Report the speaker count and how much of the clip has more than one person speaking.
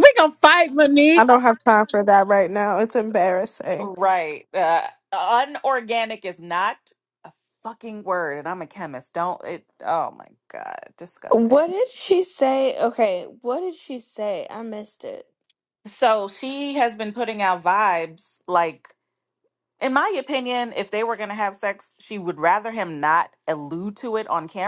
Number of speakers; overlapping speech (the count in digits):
4, about 3%